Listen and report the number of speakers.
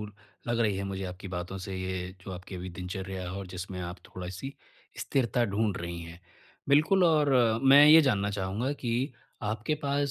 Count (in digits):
1